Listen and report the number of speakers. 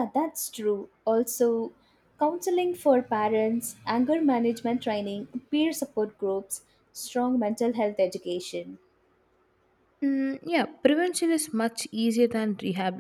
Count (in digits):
2